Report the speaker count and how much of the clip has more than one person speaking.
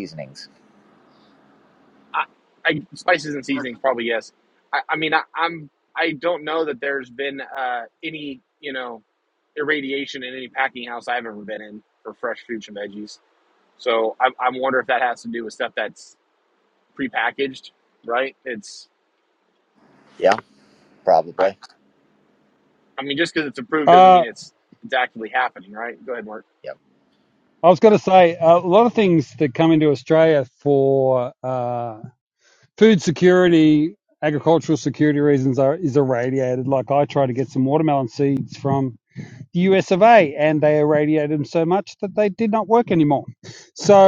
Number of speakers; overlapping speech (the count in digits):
3, about 1%